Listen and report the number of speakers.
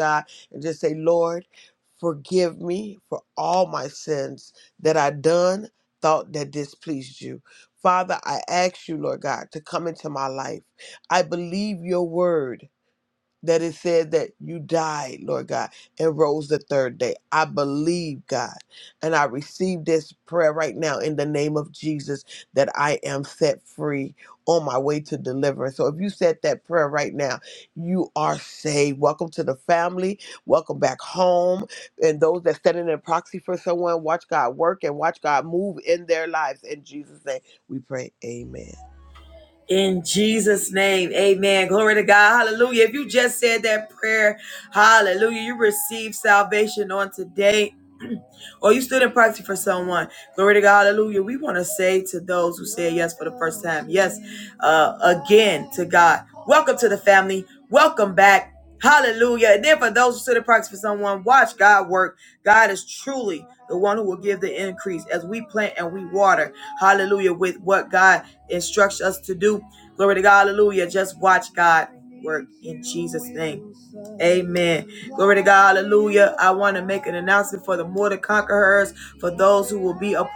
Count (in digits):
2